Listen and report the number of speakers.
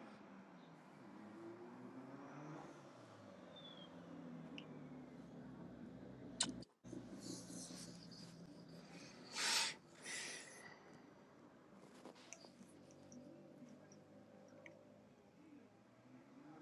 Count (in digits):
0